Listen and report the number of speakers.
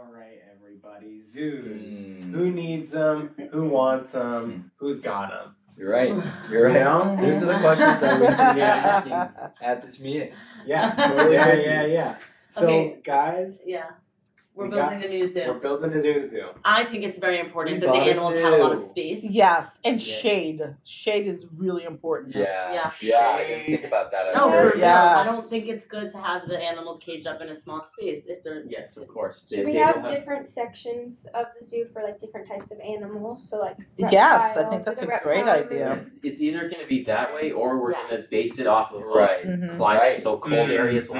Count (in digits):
6